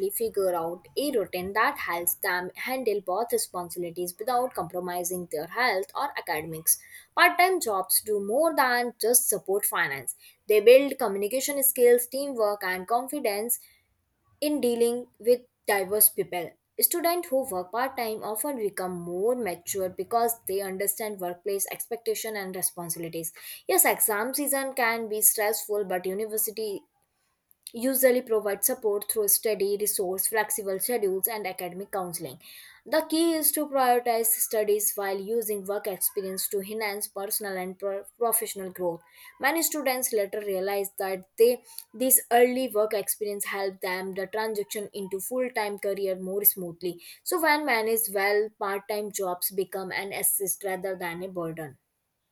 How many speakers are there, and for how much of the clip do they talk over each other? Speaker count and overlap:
1, no overlap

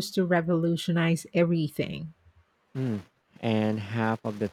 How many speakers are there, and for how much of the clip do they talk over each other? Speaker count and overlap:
2, no overlap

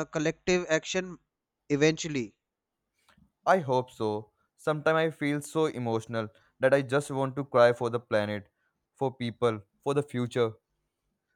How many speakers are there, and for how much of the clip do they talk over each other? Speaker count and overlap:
2, no overlap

